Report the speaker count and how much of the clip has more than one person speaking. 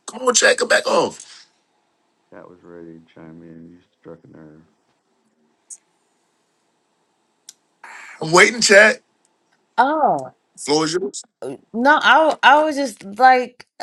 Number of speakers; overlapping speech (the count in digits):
3, no overlap